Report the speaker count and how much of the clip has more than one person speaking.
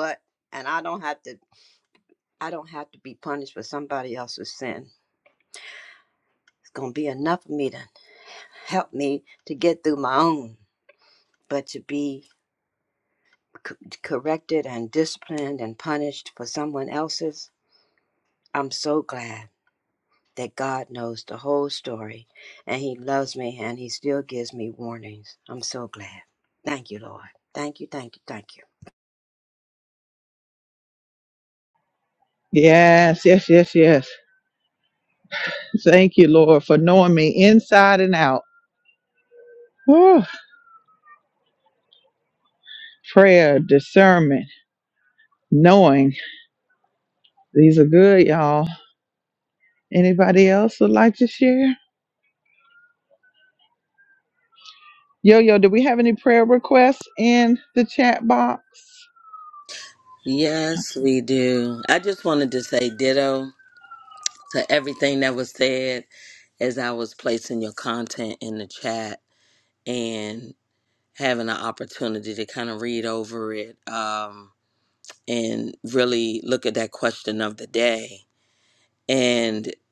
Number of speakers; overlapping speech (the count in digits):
3, no overlap